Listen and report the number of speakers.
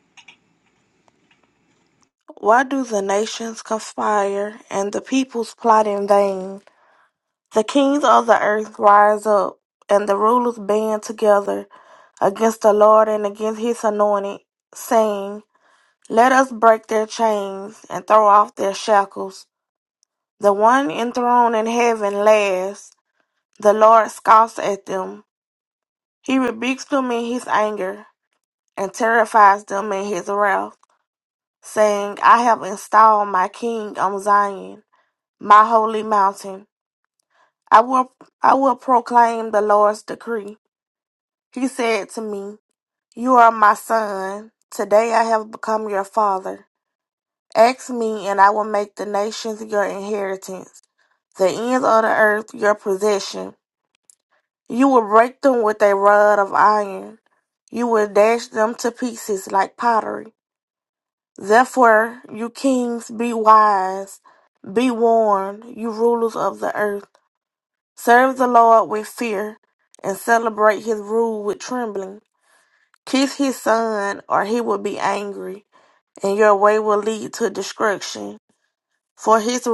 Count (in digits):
1